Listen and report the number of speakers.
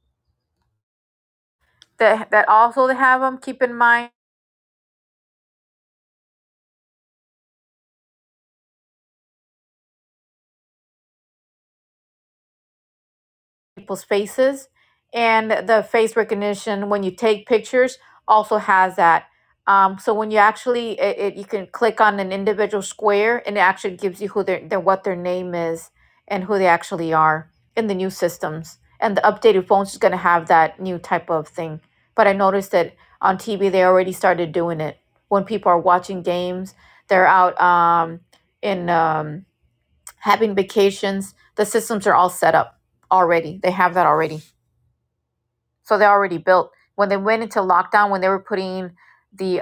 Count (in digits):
1